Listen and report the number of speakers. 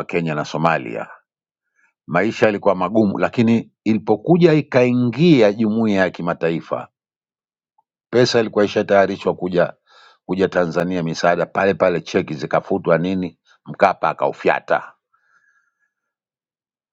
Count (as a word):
one